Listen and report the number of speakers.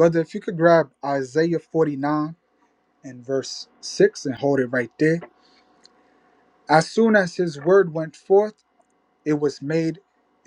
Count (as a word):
one